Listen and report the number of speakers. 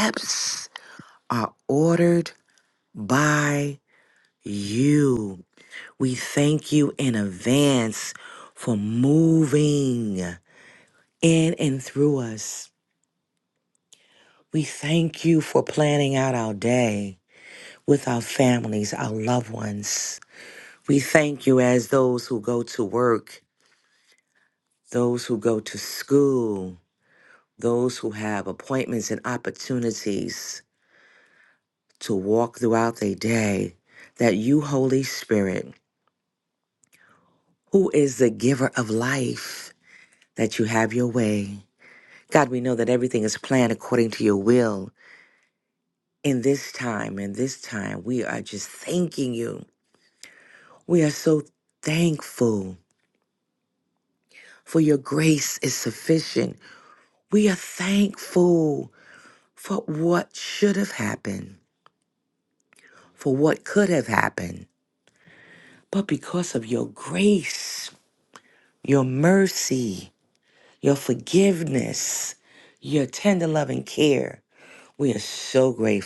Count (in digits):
1